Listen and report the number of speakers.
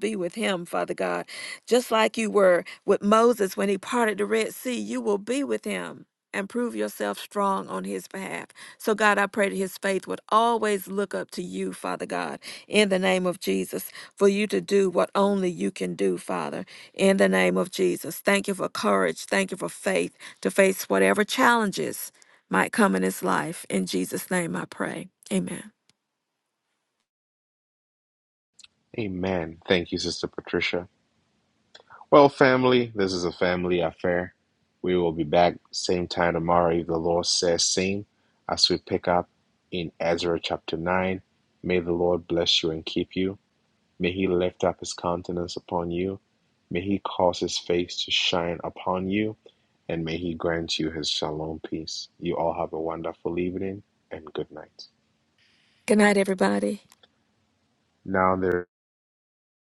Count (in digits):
2